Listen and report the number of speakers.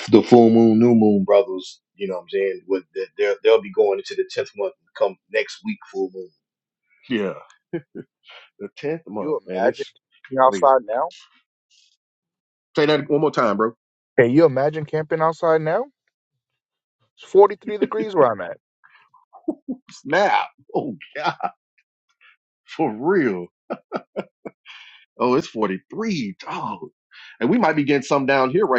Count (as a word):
three